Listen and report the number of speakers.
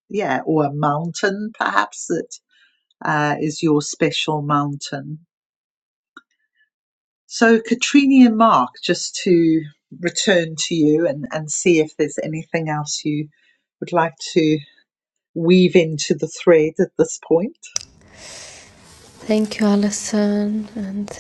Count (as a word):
two